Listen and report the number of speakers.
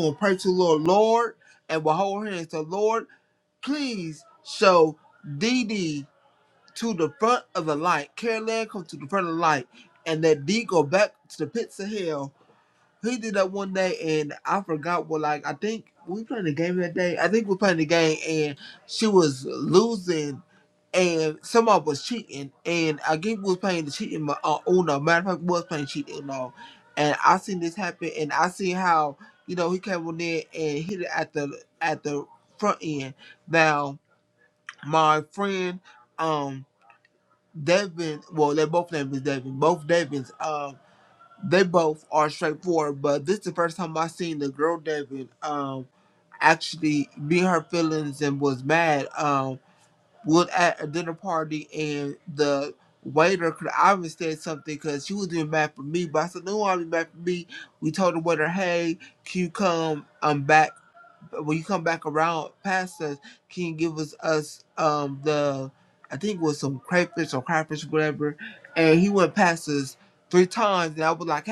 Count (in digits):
1